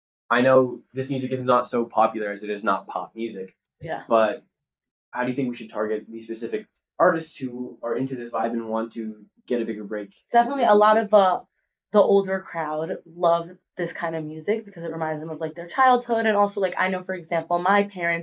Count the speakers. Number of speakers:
two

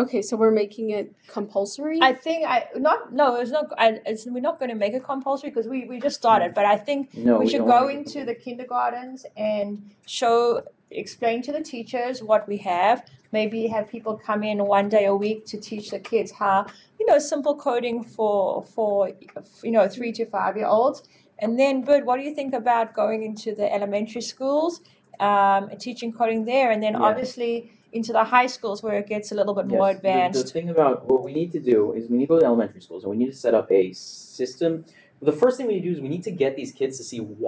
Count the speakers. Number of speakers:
three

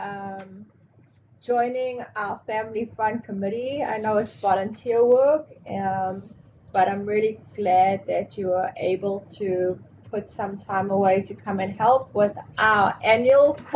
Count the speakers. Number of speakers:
one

